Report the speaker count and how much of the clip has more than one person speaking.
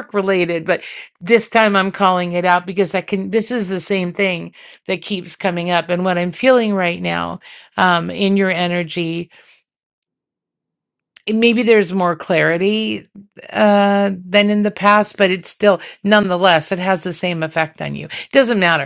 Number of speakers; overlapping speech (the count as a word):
one, no overlap